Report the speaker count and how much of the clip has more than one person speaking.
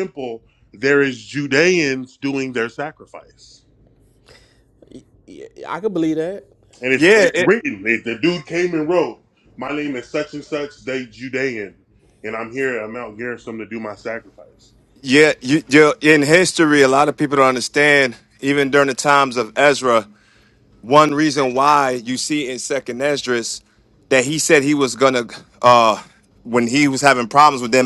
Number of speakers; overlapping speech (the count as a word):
three, about 2%